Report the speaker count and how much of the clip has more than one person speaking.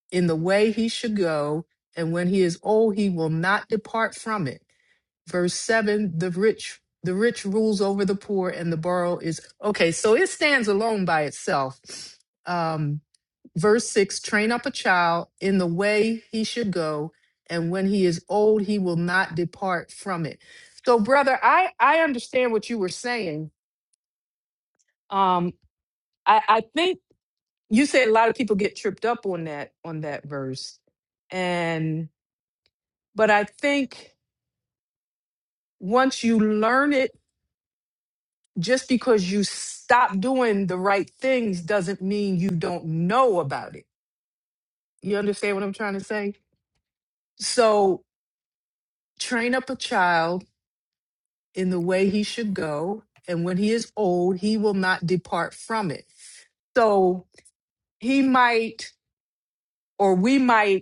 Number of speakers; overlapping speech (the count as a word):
one, no overlap